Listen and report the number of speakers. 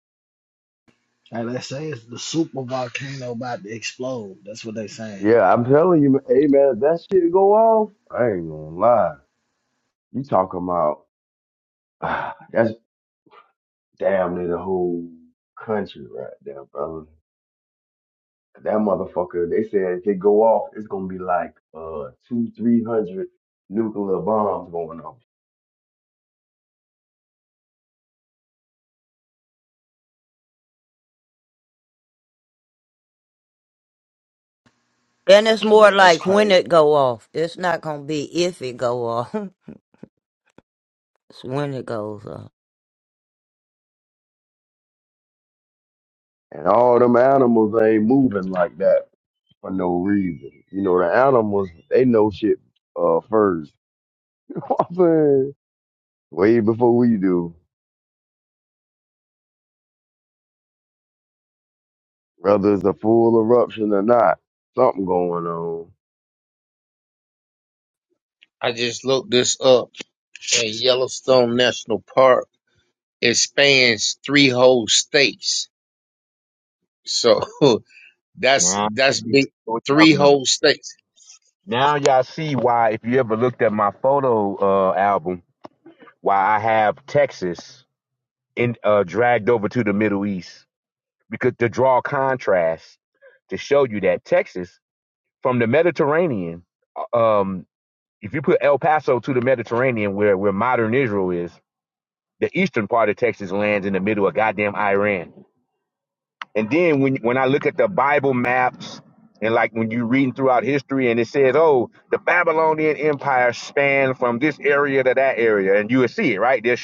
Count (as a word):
five